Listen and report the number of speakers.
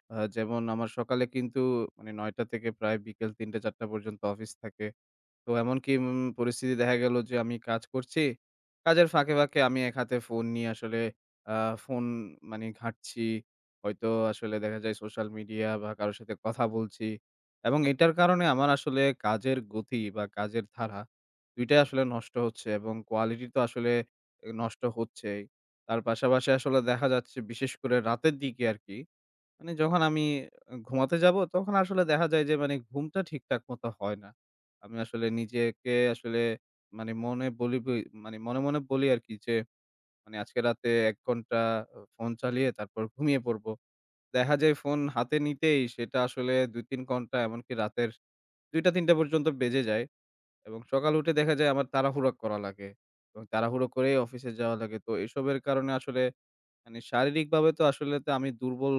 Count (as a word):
one